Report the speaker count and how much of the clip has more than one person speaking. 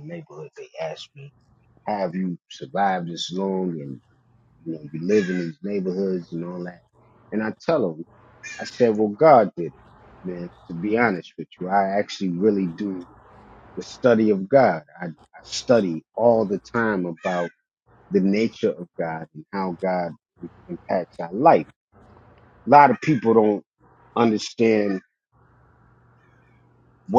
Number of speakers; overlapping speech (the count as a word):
one, no overlap